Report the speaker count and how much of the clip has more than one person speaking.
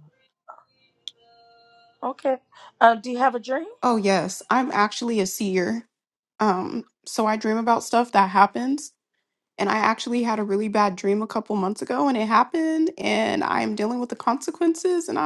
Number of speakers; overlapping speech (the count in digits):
2, no overlap